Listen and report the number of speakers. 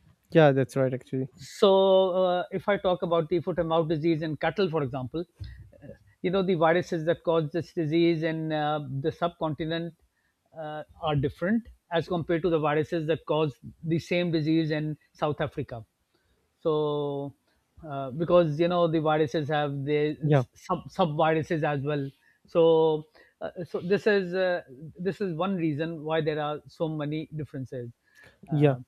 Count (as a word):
two